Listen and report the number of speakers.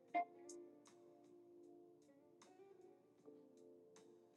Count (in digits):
0